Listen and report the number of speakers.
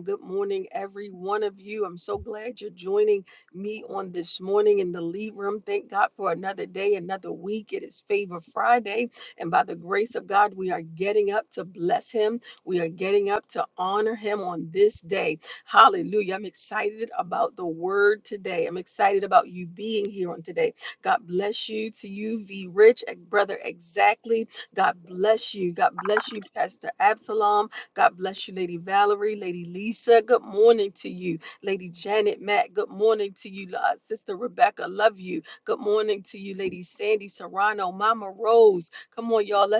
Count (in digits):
1